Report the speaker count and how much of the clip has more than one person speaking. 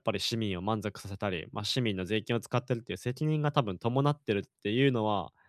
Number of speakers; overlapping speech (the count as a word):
one, no overlap